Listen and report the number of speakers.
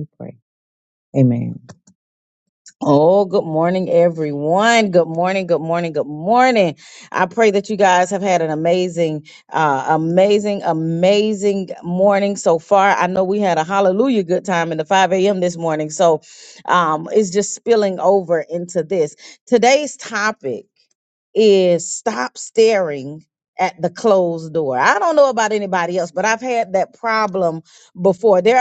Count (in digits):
1